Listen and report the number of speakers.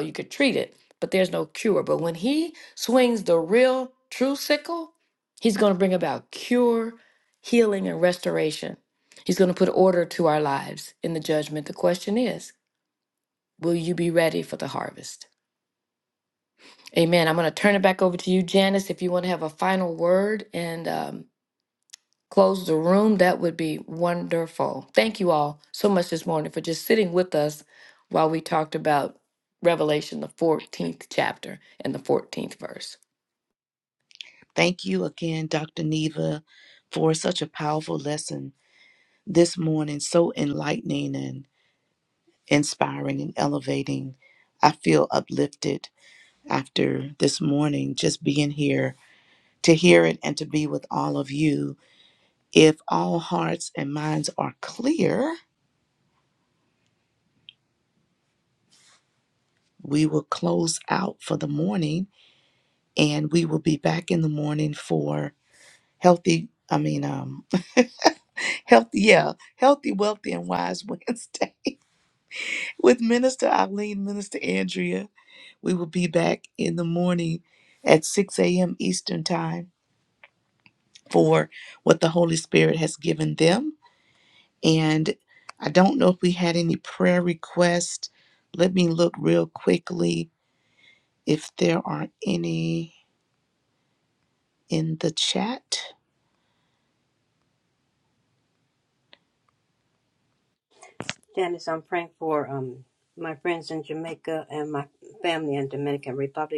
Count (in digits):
3